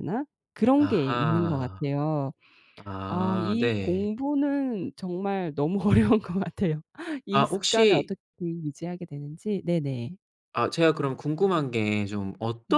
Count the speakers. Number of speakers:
2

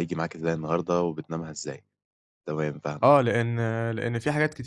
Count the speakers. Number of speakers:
2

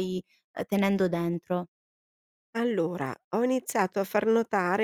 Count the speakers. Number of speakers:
2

